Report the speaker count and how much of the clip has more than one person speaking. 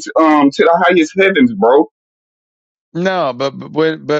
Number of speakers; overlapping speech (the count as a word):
two, no overlap